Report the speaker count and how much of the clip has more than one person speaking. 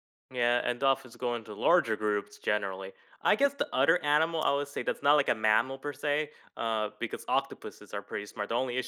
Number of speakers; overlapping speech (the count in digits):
1, no overlap